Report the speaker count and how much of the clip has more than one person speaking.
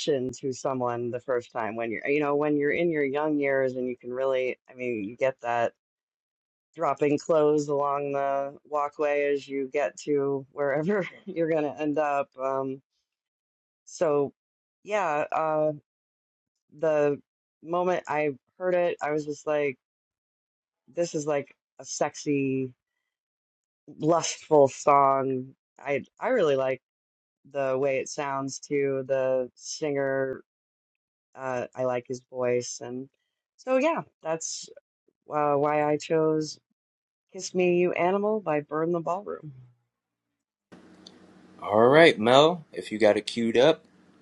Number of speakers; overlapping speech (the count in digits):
2, no overlap